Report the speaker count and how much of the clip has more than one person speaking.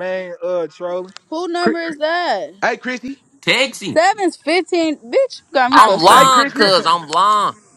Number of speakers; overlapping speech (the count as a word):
four, about 17%